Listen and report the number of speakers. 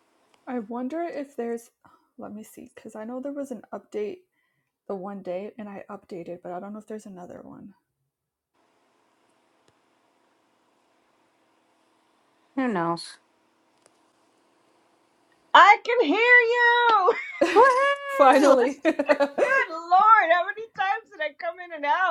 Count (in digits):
3